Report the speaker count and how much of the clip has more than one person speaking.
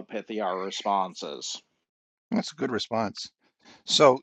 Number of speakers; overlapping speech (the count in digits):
2, no overlap